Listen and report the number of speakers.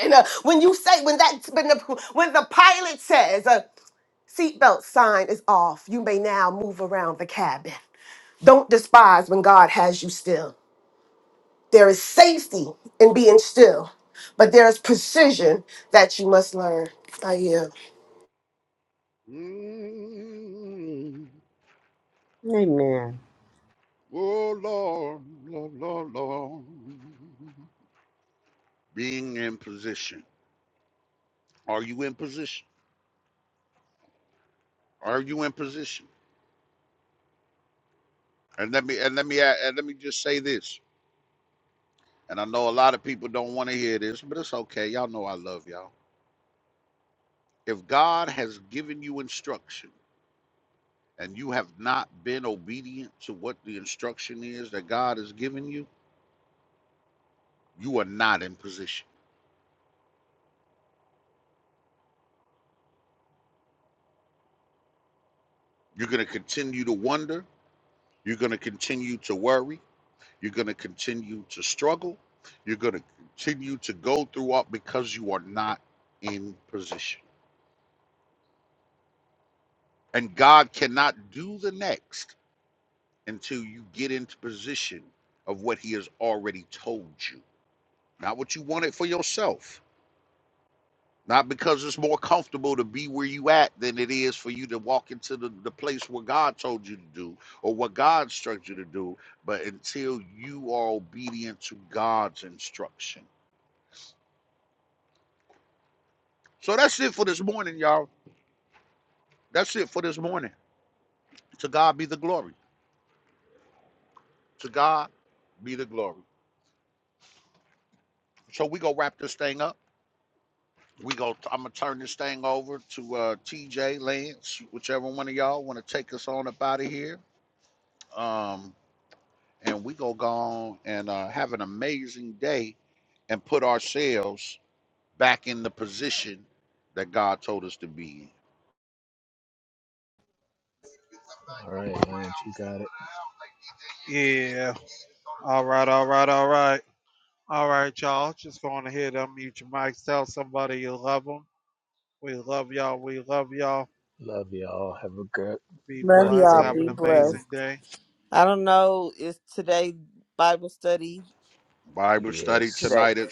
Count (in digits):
5